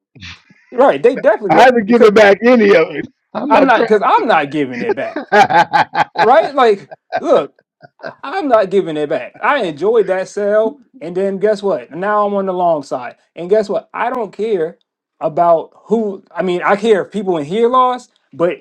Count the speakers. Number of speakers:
2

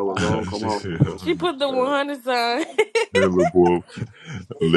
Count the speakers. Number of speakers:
3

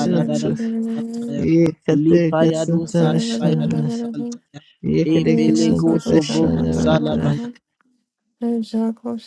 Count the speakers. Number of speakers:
3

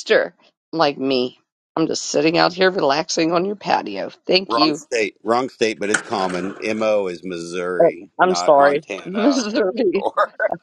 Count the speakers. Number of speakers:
2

